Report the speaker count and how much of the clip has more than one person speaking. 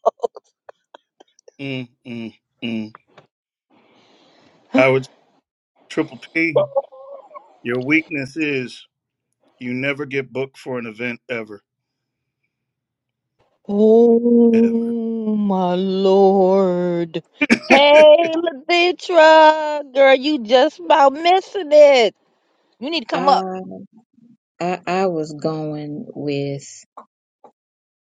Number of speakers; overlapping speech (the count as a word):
three, about 2%